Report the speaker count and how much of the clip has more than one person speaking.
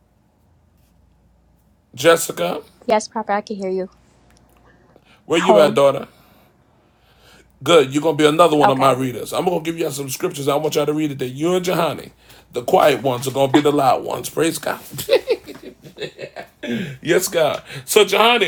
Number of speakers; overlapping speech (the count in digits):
2, about 4%